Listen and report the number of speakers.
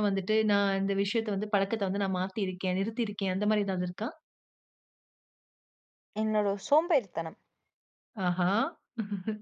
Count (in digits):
2